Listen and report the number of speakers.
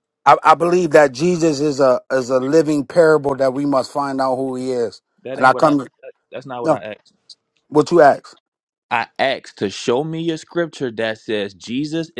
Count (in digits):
2